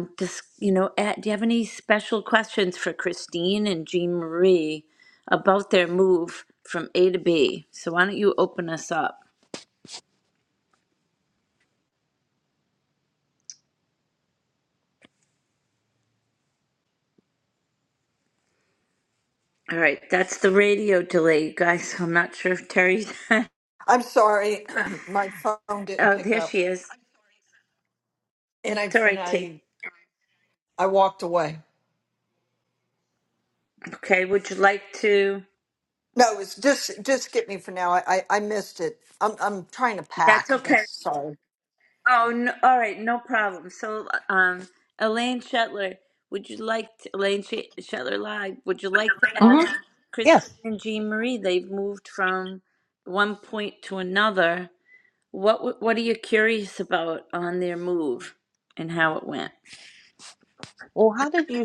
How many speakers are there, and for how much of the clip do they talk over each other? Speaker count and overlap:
3, about 3%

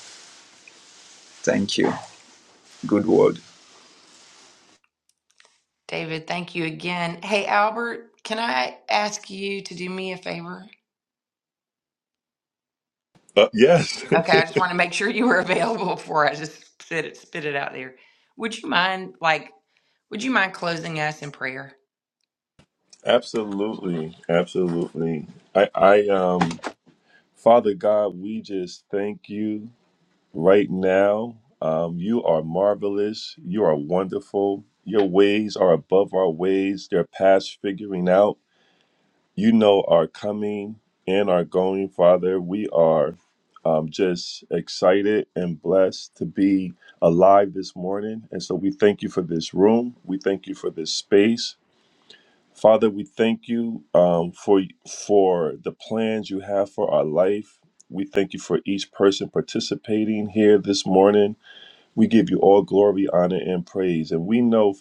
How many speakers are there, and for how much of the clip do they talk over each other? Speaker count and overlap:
3, no overlap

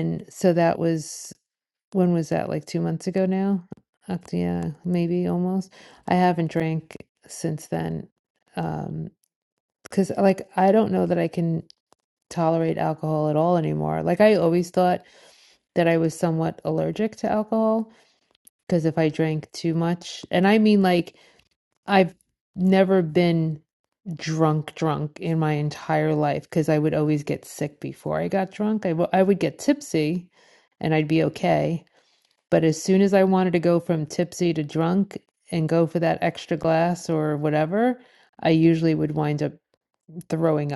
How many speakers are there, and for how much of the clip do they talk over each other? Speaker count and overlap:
1, no overlap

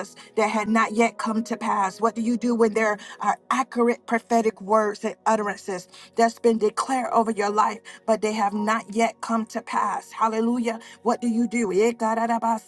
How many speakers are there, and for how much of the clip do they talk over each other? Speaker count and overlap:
1, no overlap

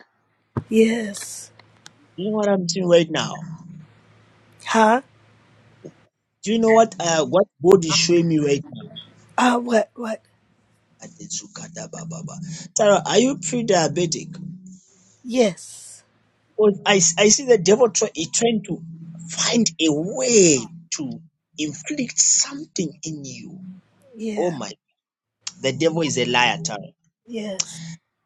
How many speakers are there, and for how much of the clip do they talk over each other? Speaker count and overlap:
2, about 1%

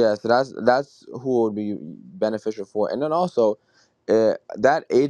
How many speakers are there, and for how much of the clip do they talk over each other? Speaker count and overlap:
1, no overlap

